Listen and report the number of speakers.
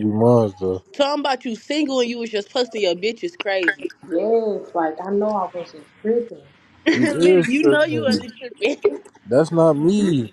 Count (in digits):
3